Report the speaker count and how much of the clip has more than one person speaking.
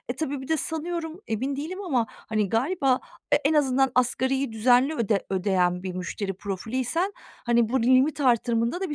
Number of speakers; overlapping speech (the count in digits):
1, no overlap